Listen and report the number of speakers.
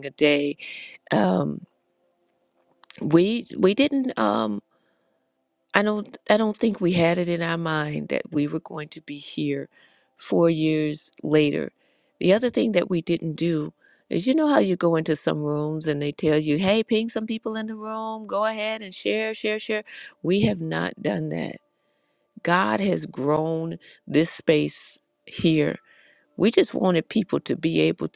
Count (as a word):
one